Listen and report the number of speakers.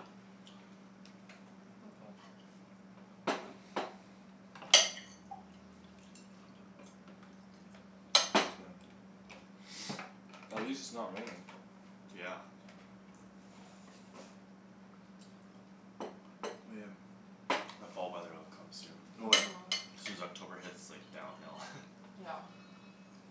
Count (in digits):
3